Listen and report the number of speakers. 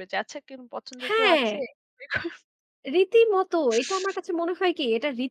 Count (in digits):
2